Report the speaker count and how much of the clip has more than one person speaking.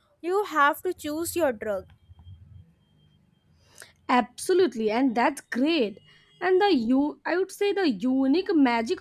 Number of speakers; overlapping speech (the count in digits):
2, no overlap